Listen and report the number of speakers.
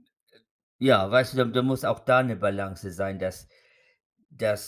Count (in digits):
1